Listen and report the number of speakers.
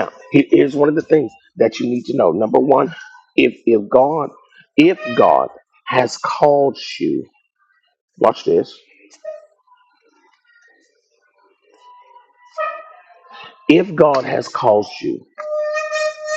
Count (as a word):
one